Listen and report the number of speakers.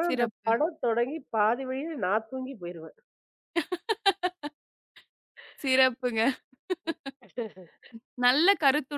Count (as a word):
two